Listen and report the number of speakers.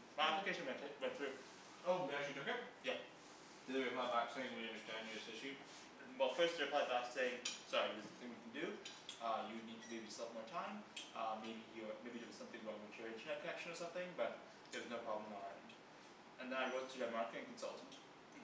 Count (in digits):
2